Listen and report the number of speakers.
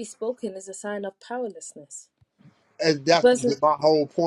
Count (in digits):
2